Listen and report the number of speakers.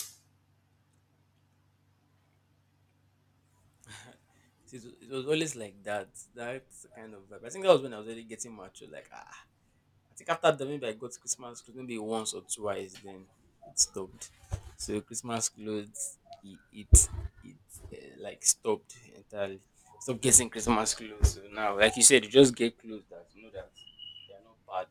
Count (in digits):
1